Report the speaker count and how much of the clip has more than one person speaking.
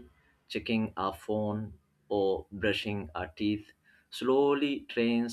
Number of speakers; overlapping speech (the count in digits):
1, no overlap